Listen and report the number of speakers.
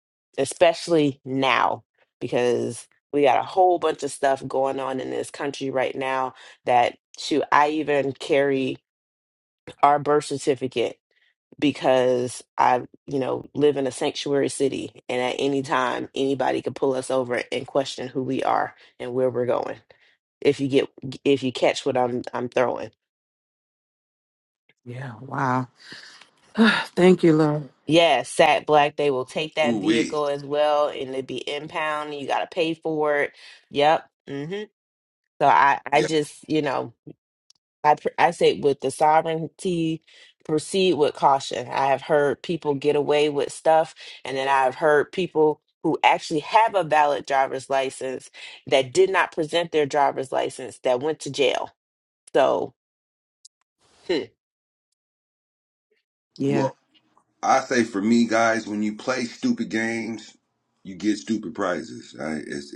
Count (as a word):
three